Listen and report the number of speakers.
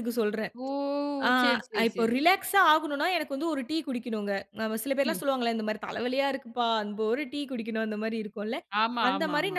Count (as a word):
two